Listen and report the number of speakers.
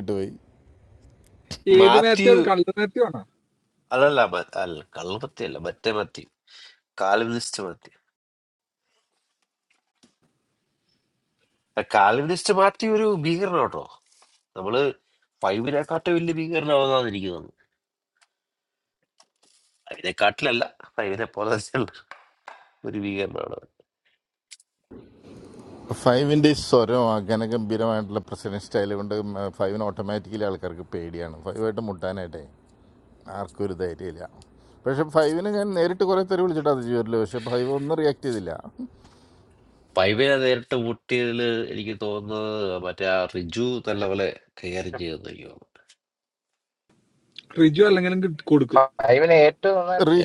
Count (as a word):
four